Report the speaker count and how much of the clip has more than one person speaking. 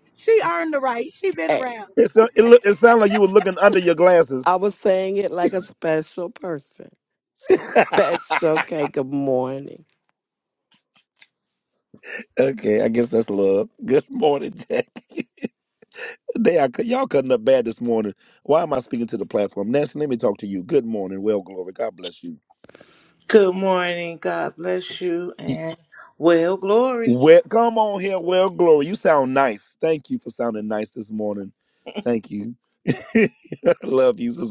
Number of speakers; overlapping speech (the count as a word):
four, about 1%